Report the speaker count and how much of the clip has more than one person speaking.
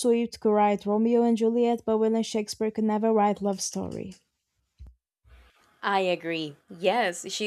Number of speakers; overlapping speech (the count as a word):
two, no overlap